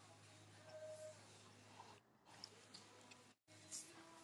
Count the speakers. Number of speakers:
0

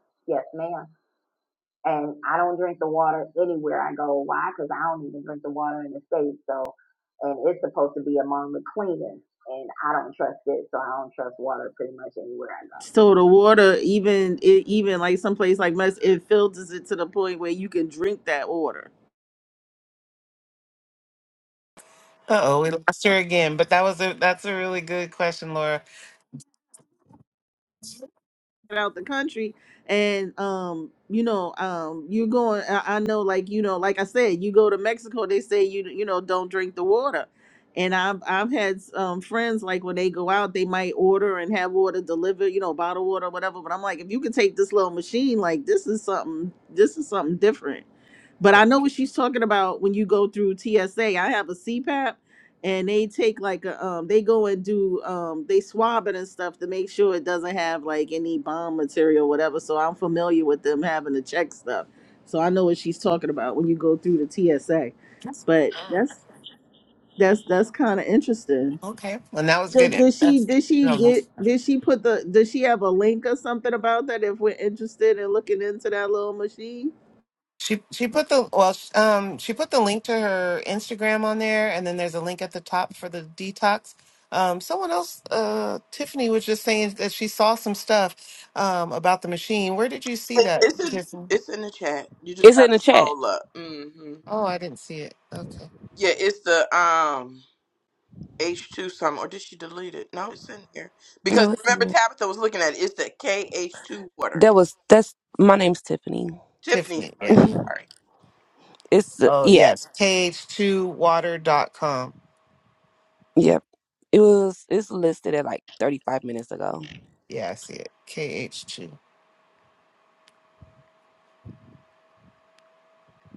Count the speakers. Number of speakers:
5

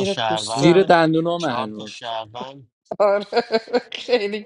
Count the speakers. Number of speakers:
3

